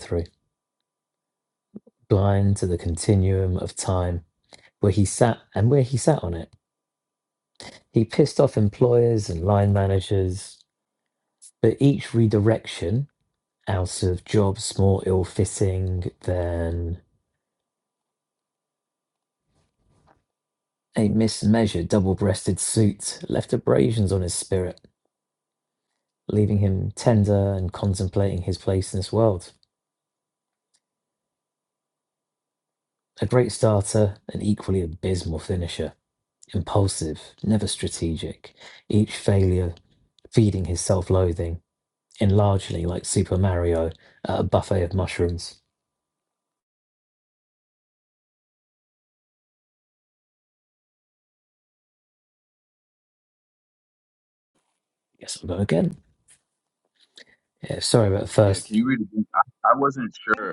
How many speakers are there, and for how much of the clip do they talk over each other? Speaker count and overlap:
two, under 1%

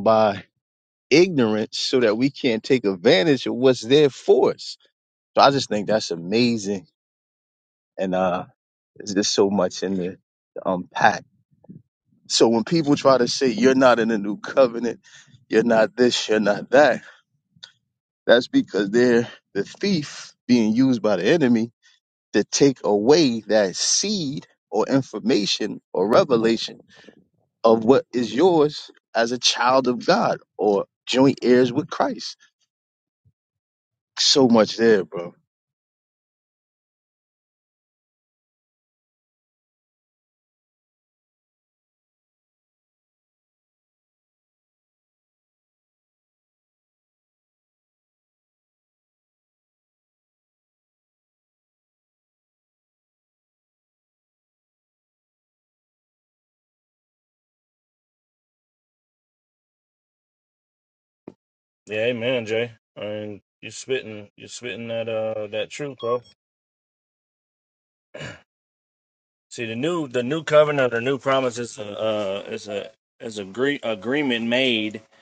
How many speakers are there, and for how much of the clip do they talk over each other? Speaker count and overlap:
two, no overlap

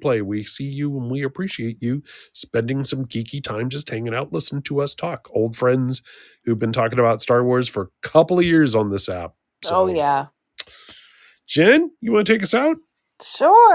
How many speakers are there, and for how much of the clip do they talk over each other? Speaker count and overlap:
two, about 2%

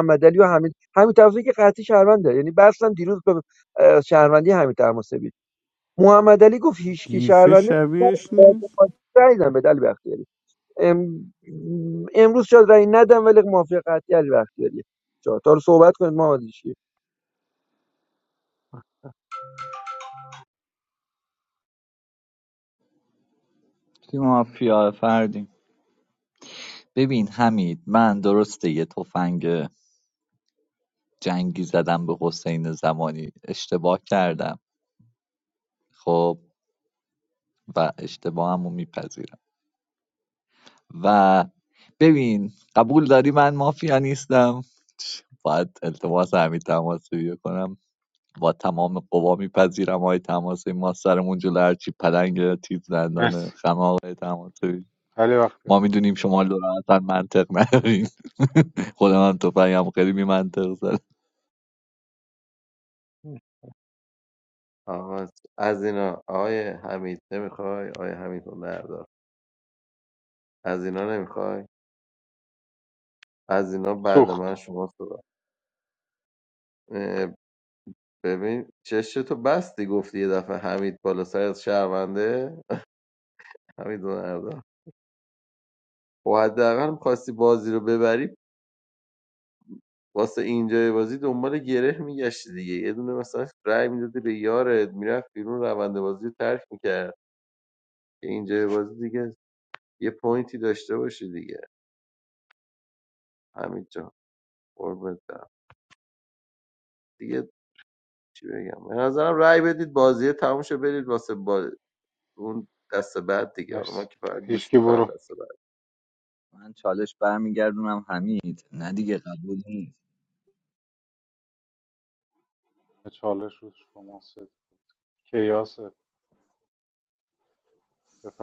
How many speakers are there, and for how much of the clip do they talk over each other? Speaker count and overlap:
five, about 2%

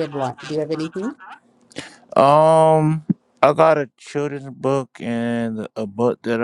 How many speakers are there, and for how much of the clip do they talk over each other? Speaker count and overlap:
two, no overlap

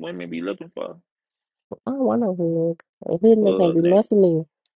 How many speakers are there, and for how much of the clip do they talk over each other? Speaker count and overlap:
two, about 12%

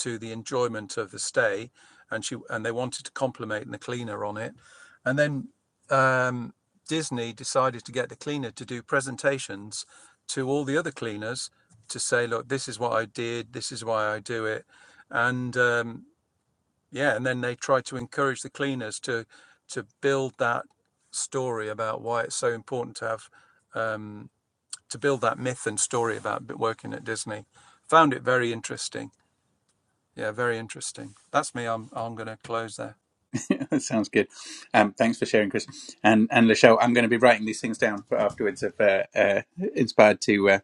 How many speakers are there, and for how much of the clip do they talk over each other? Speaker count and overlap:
two, no overlap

